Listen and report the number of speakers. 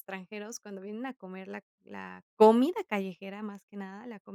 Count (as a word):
one